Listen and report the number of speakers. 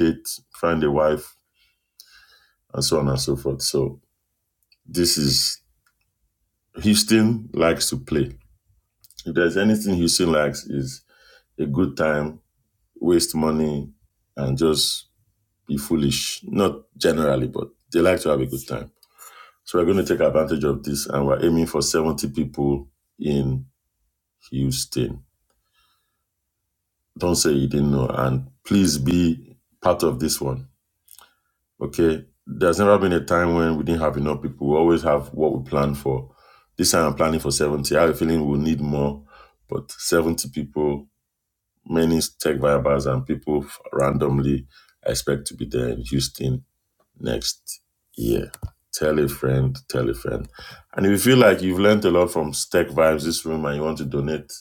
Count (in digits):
1